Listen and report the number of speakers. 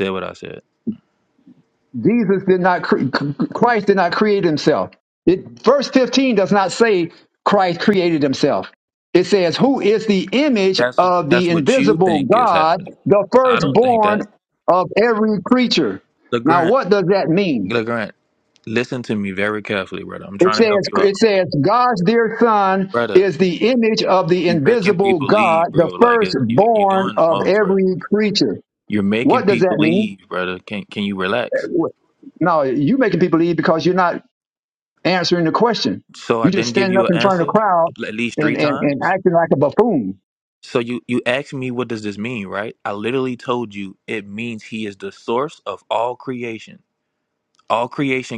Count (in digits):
2